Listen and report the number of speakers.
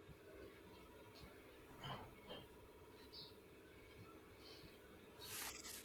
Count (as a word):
zero